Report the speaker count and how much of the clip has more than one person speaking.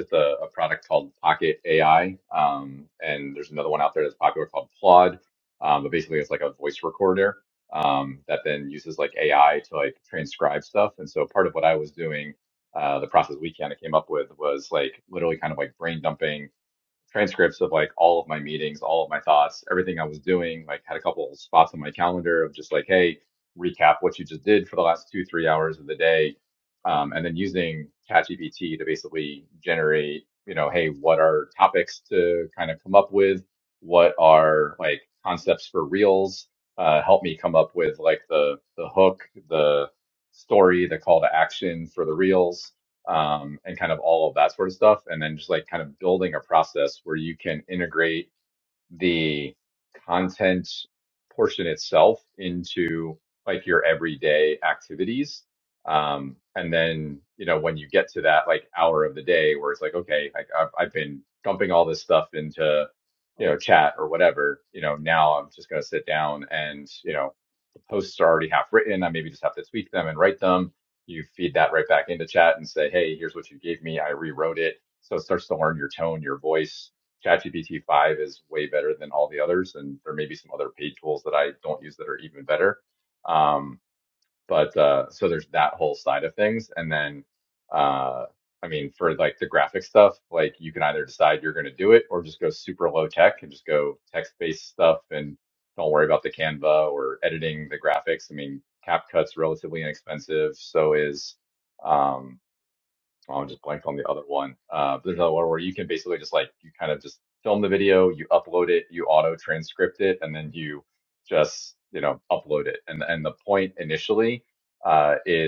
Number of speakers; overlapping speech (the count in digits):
1, no overlap